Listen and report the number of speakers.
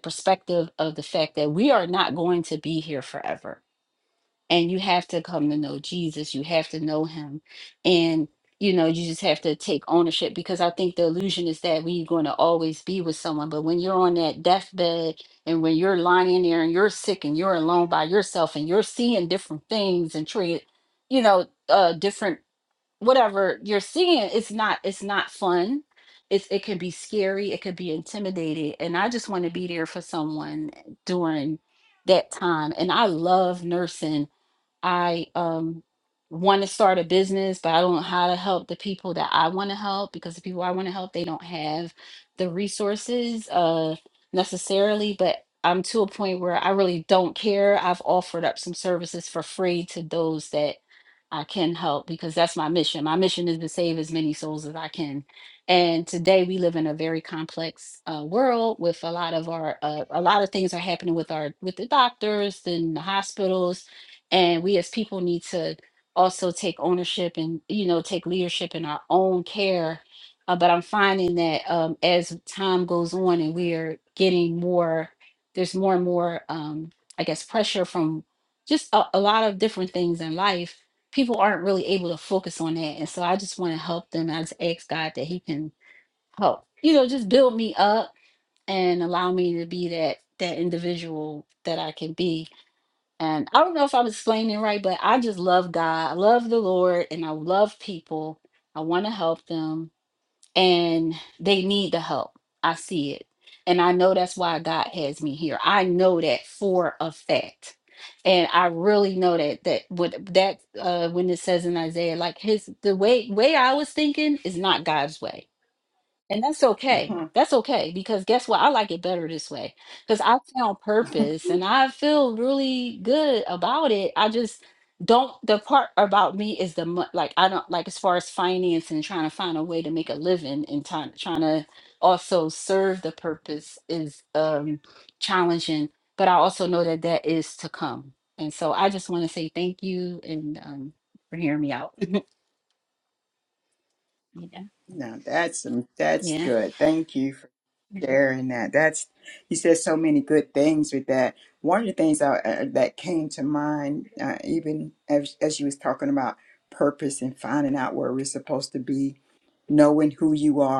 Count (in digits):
2